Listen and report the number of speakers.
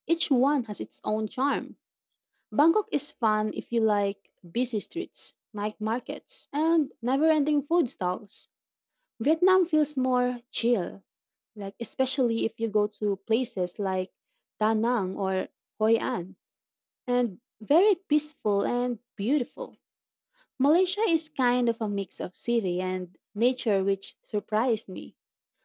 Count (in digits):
1